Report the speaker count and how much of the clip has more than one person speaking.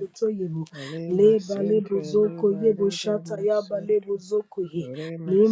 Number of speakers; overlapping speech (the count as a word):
two, about 63%